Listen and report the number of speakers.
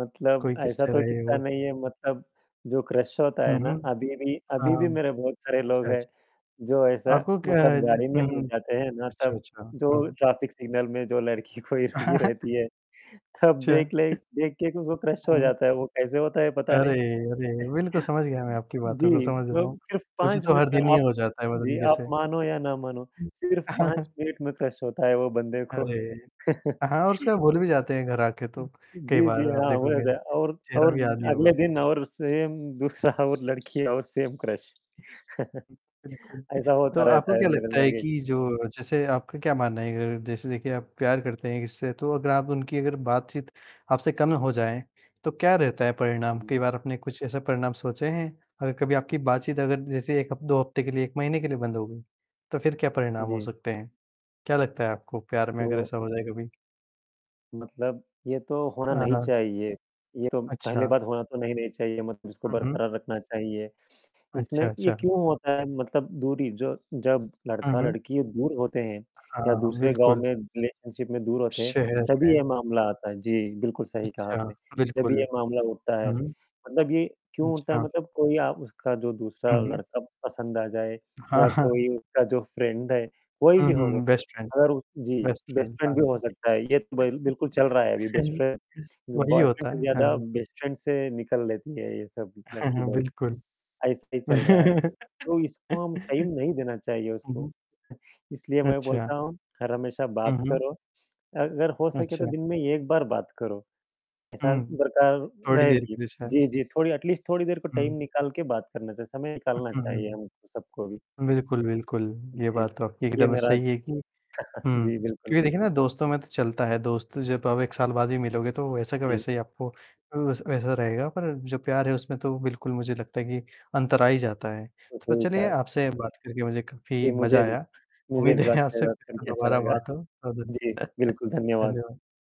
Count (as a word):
two